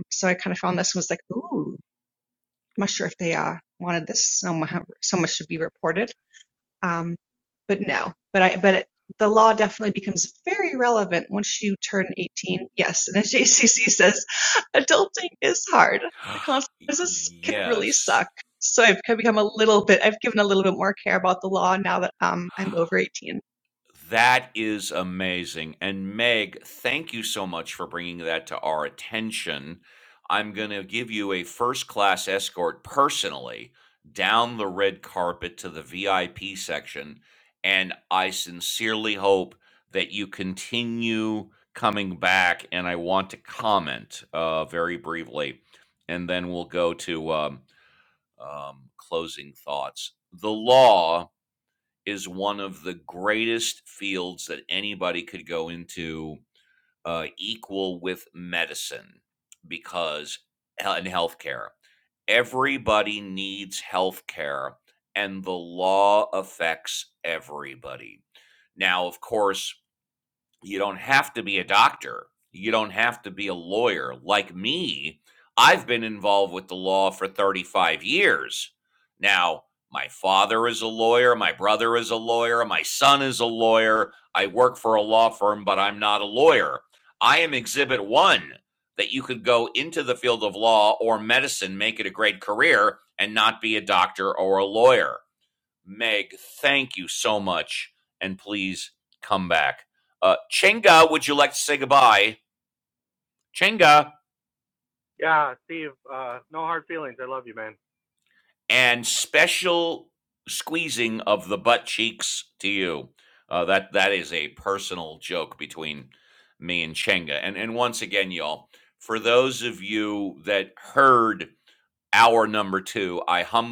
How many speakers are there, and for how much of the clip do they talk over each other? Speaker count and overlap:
3, under 1%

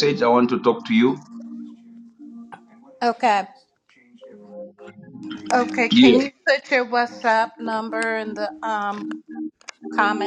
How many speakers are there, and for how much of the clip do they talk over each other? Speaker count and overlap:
2, about 4%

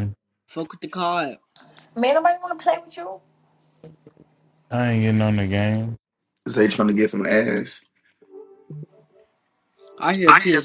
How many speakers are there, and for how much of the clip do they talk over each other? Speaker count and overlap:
4, about 4%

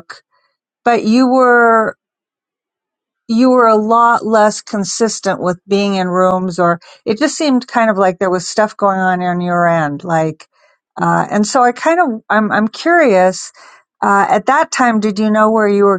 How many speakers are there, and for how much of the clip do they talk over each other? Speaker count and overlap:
1, no overlap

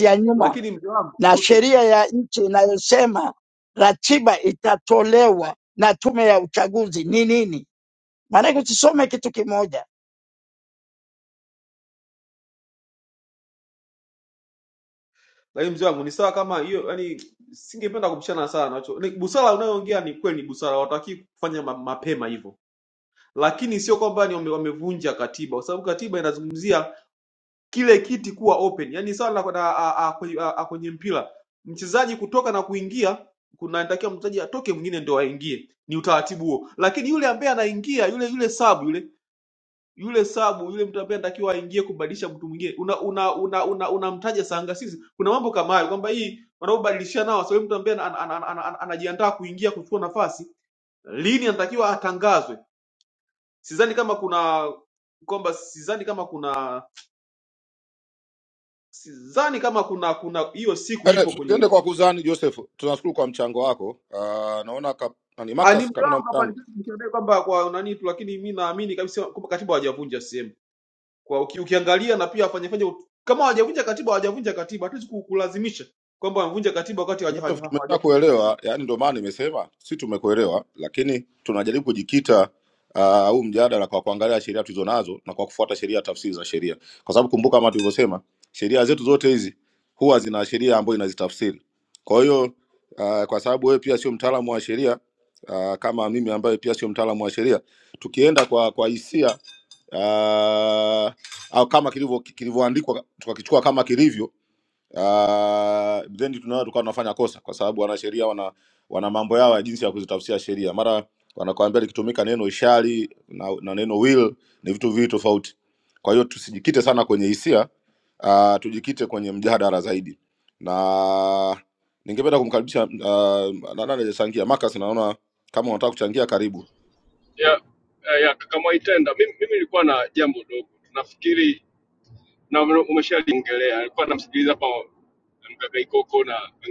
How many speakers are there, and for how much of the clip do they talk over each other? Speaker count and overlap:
4, about 2%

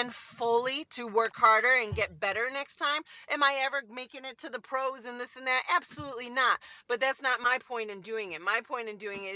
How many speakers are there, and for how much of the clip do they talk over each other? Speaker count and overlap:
1, no overlap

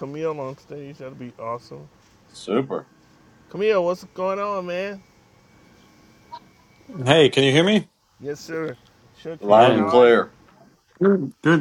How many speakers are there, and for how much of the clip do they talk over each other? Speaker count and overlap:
3, about 7%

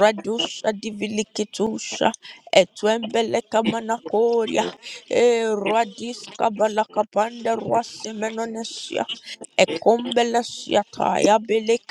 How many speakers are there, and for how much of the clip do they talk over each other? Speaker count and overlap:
1, no overlap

